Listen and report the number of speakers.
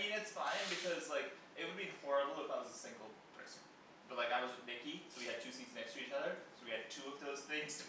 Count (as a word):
one